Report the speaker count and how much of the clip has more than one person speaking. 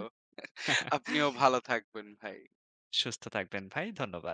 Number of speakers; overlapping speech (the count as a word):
two, no overlap